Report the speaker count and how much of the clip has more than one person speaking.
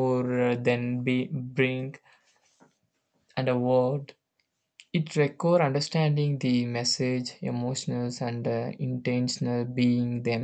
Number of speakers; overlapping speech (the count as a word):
one, no overlap